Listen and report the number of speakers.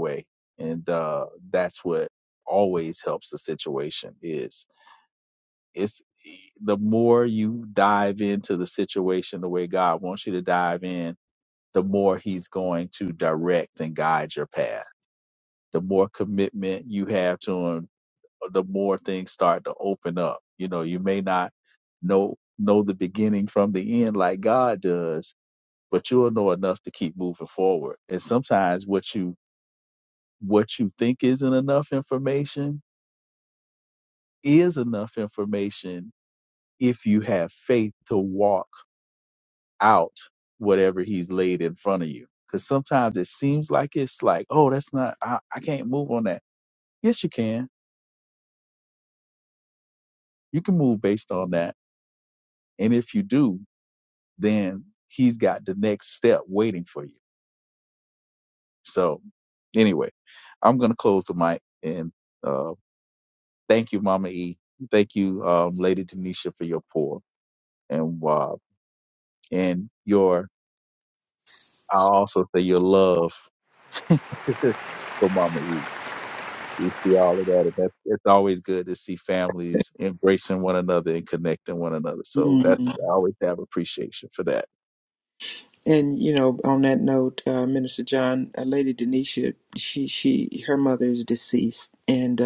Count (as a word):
two